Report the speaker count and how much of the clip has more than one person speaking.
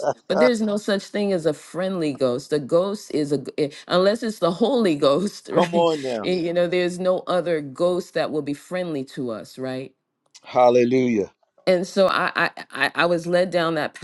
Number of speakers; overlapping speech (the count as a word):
two, about 3%